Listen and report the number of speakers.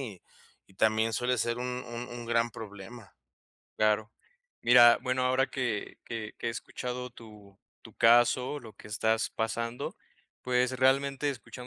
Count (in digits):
2